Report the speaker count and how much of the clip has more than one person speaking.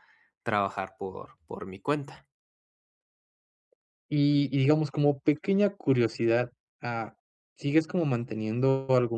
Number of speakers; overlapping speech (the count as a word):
two, no overlap